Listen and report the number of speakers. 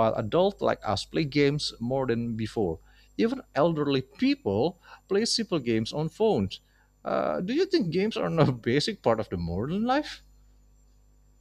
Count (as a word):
one